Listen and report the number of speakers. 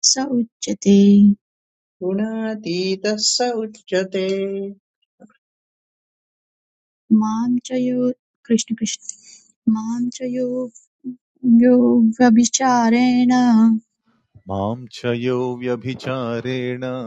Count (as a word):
three